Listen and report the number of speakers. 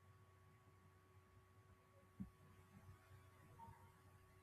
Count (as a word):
zero